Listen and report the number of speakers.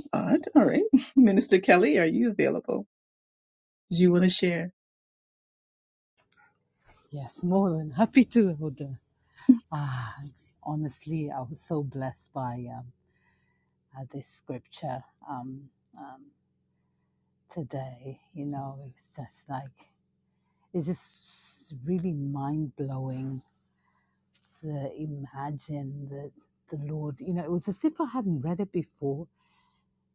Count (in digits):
2